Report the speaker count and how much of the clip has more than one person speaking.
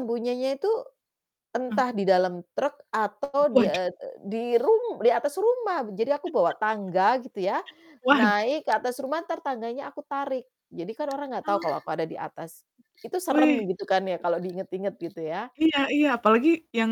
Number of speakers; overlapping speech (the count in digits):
2, about 8%